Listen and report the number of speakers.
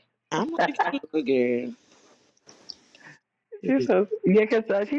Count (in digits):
2